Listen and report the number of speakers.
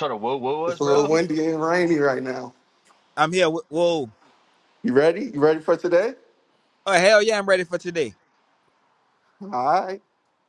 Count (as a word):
three